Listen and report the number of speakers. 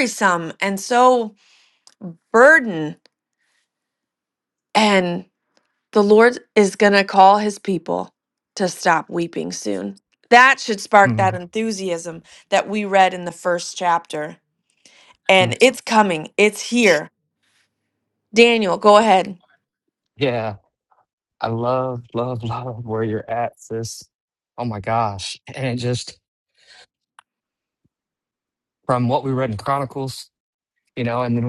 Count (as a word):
two